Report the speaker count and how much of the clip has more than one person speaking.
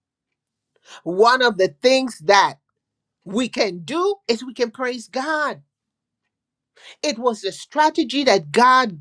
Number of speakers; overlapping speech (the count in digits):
1, no overlap